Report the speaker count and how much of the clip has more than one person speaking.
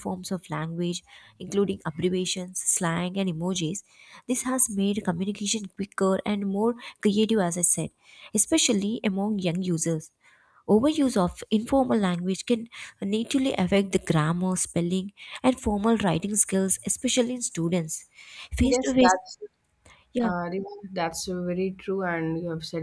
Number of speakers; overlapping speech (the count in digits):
2, about 3%